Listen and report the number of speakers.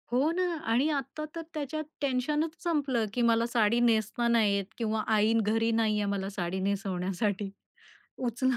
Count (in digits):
1